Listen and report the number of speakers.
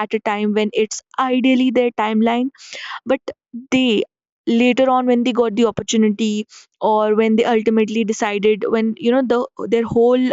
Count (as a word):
one